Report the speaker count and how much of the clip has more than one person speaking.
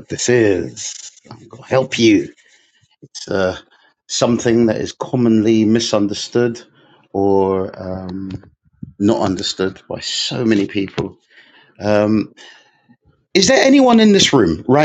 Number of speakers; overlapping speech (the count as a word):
one, no overlap